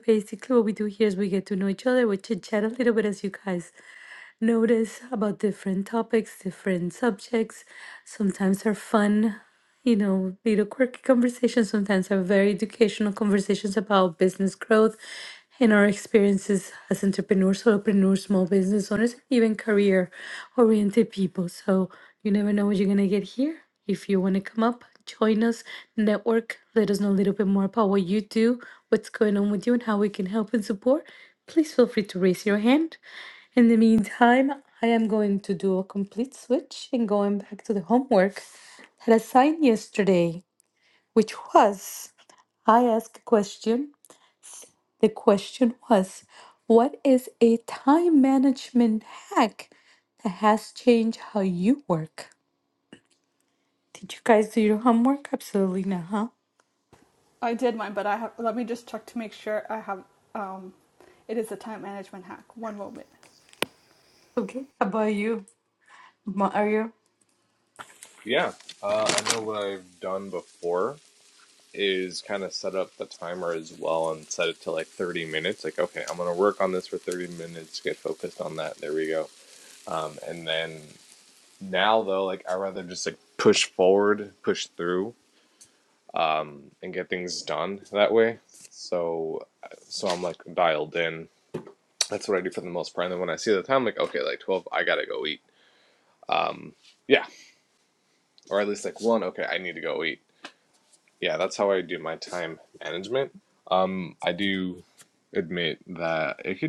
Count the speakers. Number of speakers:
3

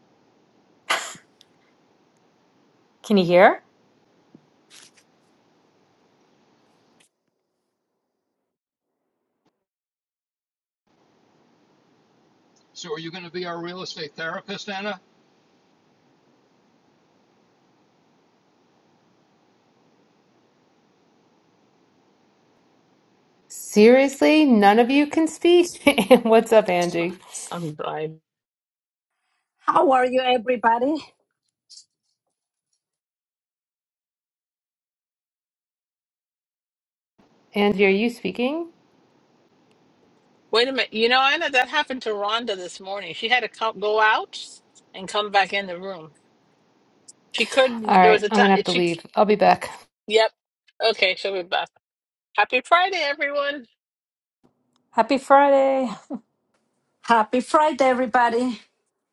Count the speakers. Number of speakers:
5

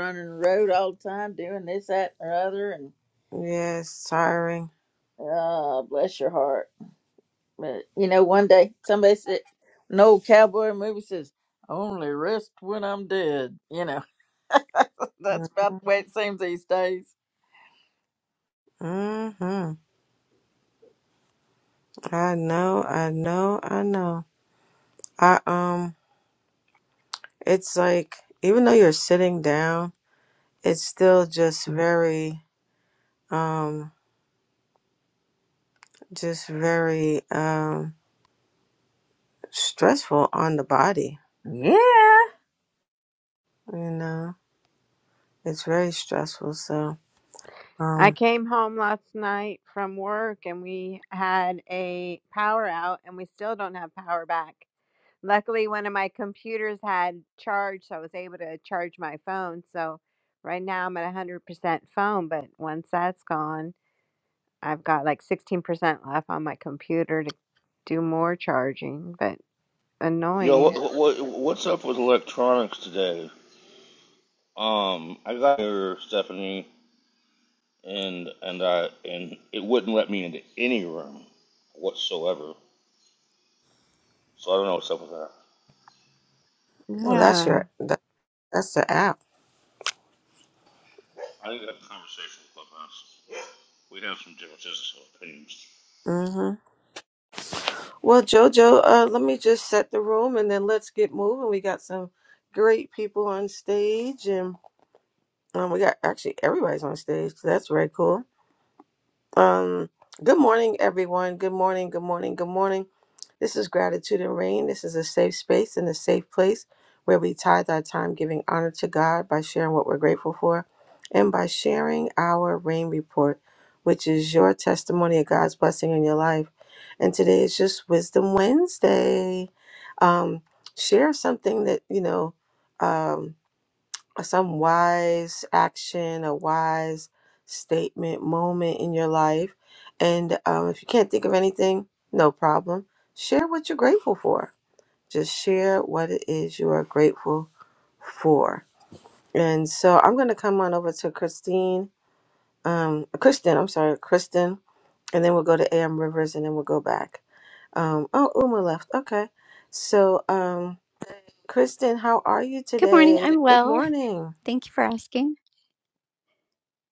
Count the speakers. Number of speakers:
5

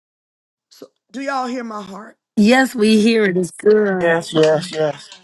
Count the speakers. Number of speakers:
3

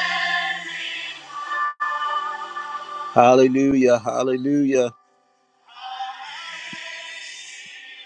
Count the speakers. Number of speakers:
1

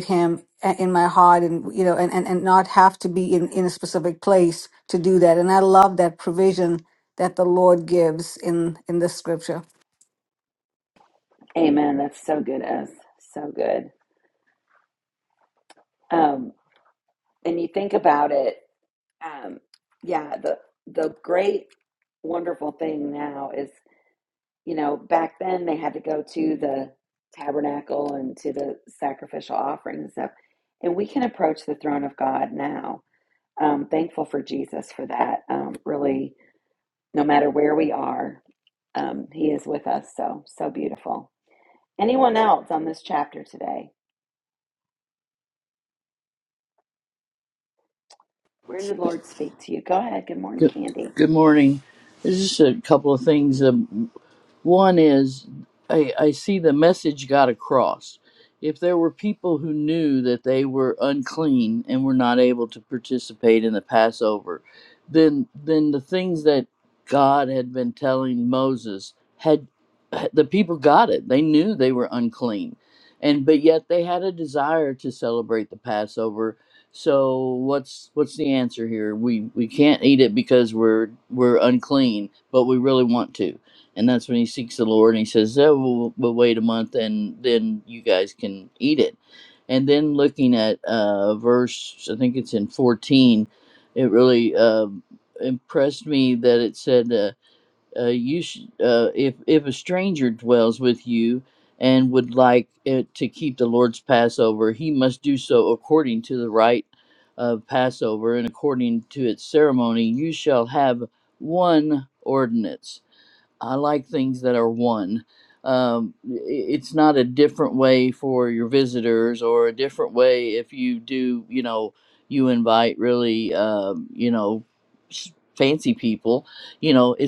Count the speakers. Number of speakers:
3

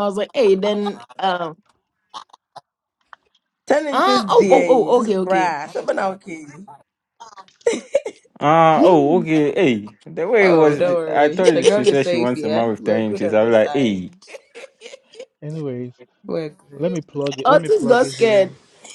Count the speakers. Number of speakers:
4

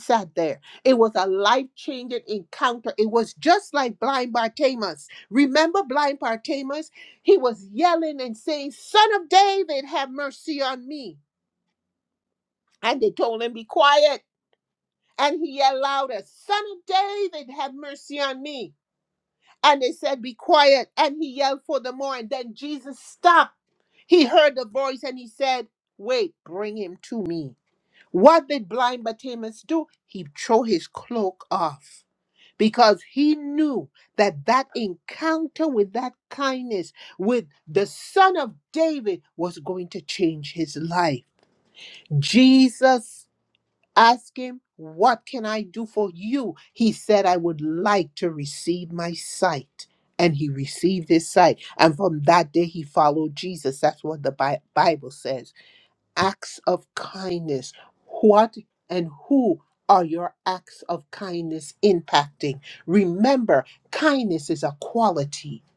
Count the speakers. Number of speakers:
1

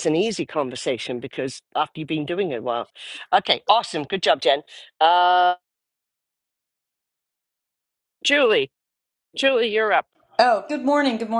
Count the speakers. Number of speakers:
3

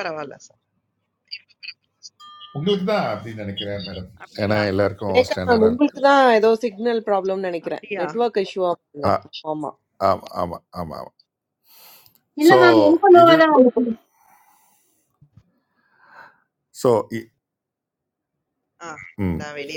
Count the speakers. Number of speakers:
4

